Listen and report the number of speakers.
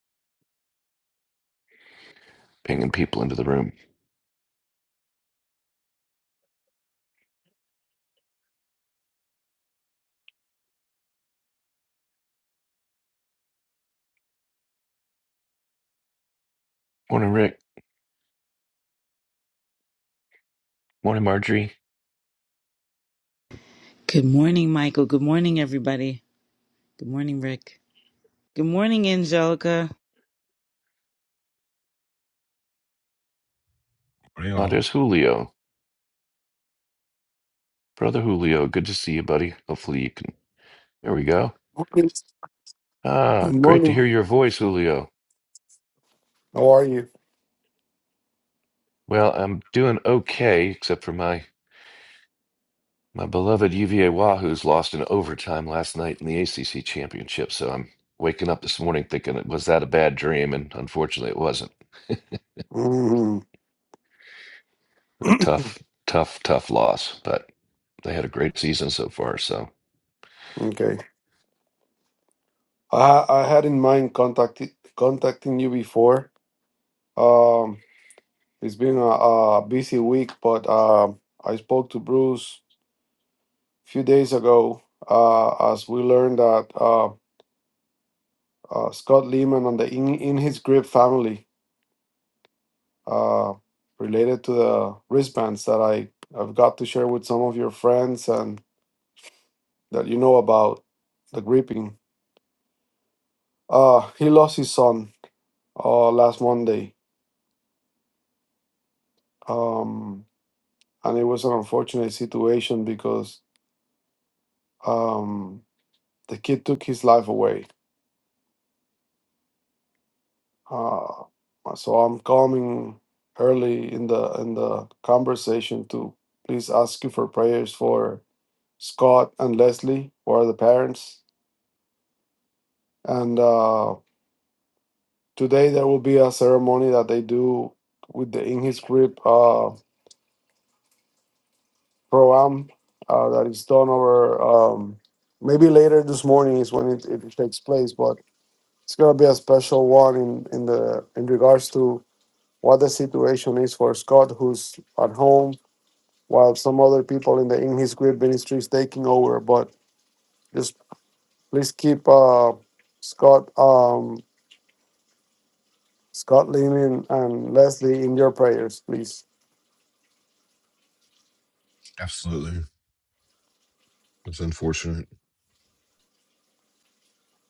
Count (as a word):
four